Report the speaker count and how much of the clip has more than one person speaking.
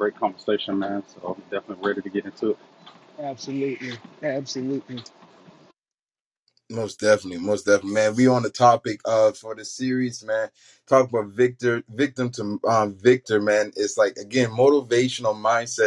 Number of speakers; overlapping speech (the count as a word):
three, no overlap